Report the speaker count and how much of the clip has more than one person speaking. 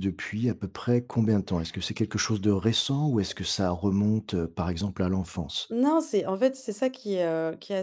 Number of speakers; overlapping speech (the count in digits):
2, no overlap